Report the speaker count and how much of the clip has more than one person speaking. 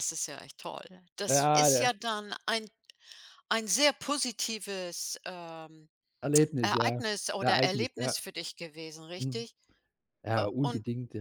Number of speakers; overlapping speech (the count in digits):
2, about 21%